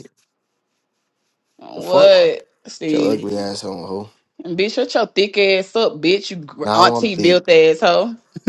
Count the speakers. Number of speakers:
2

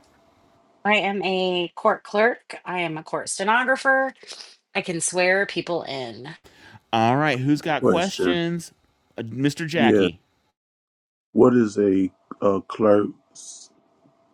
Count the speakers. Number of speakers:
3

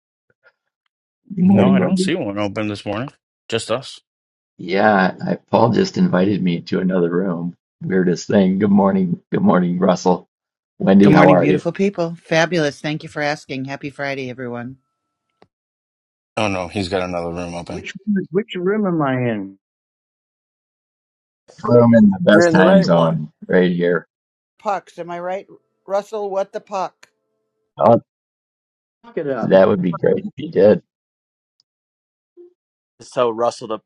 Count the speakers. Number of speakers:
5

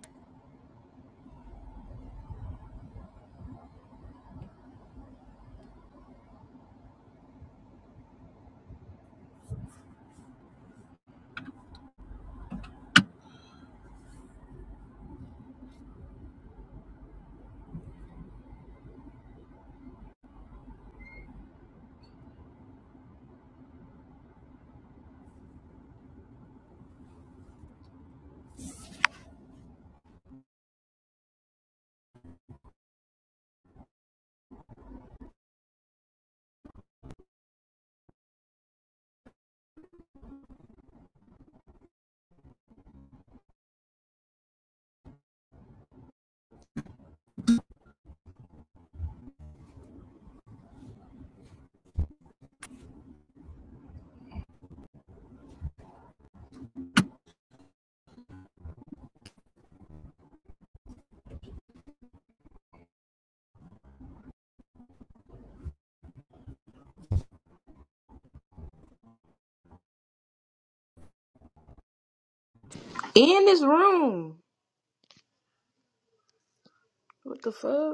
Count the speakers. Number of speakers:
1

